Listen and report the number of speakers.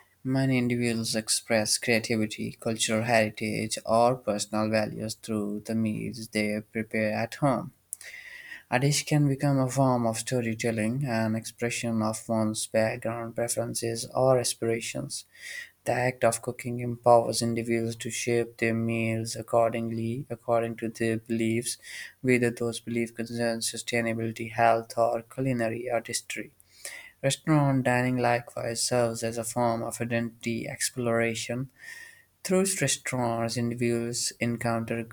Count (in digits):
1